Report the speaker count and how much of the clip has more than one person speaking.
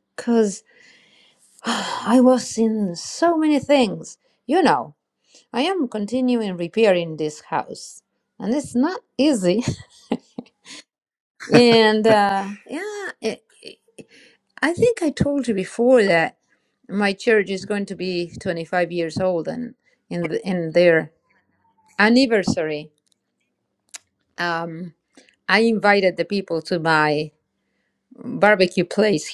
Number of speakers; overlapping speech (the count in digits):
1, no overlap